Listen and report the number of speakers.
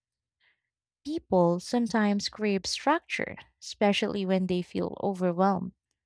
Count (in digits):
1